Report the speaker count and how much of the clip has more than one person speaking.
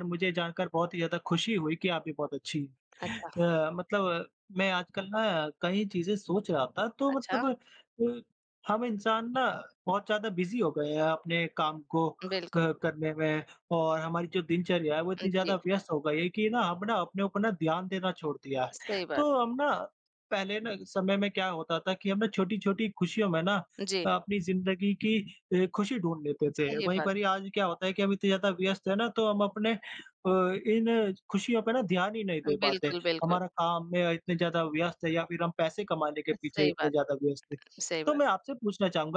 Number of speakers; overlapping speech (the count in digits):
2, about 9%